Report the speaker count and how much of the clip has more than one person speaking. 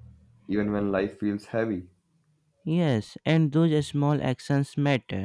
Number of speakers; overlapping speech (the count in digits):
2, no overlap